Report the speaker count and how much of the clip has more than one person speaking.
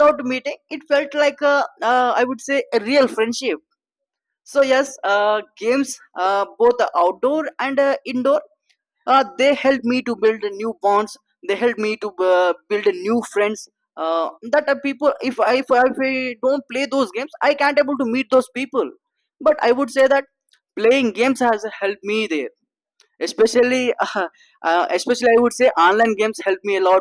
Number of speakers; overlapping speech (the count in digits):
1, no overlap